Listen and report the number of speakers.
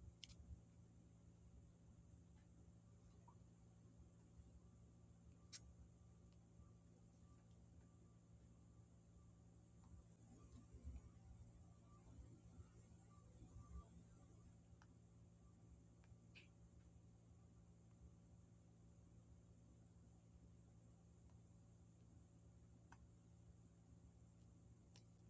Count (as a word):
zero